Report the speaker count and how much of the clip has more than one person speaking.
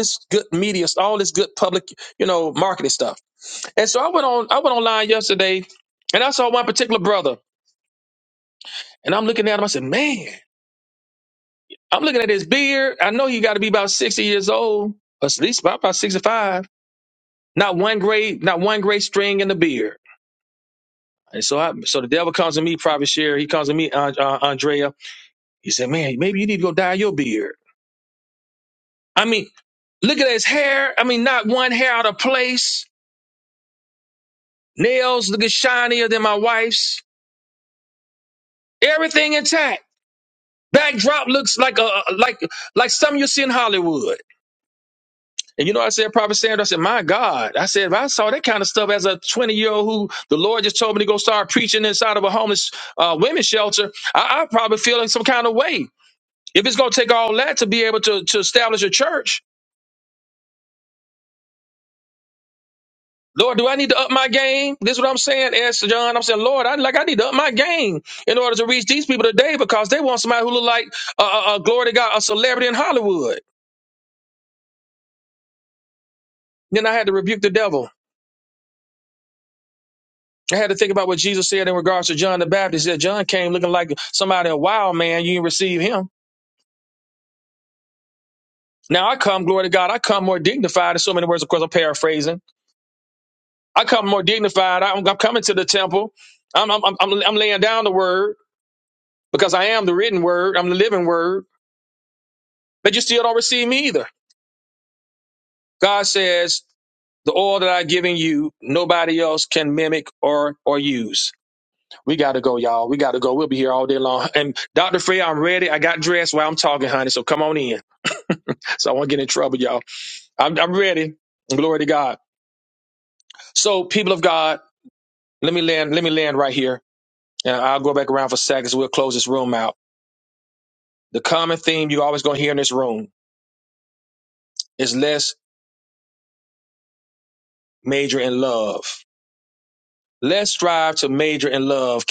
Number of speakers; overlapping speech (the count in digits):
1, no overlap